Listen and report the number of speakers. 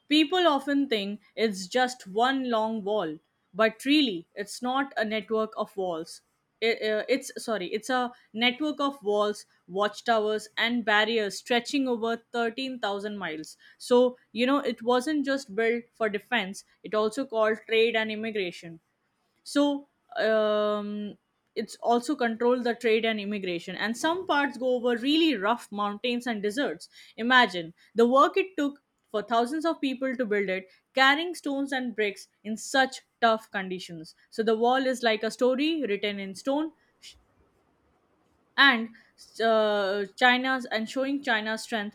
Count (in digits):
1